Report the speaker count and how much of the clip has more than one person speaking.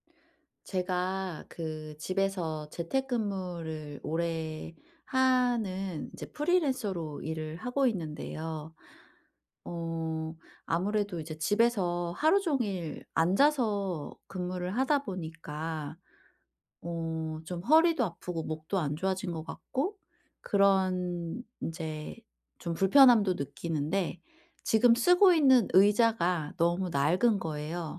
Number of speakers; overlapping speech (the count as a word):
one, no overlap